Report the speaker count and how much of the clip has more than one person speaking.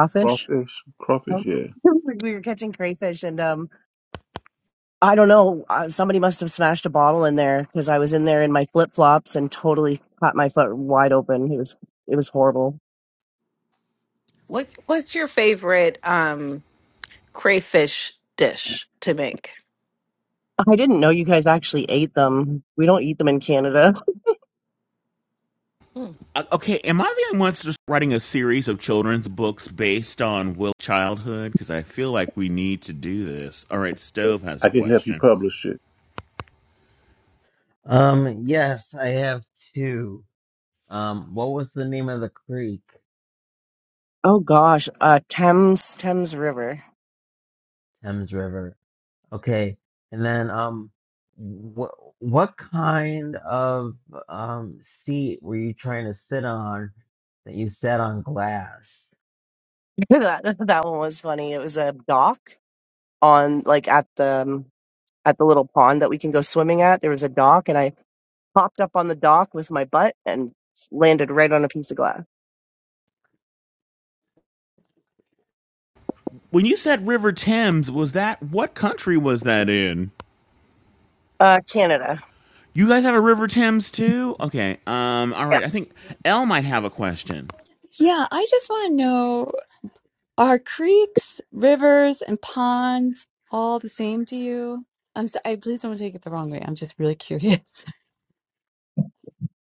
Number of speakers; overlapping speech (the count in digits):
6, about 1%